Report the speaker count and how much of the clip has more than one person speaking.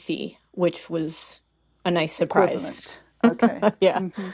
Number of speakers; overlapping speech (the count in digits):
2, about 16%